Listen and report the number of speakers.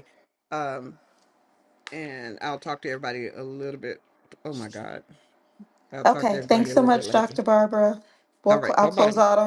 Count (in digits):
2